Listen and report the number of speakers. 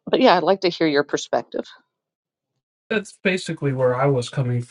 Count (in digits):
2